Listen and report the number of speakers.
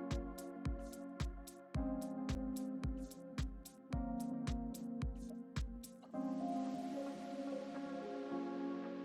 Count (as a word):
zero